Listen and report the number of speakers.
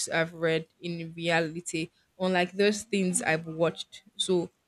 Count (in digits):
1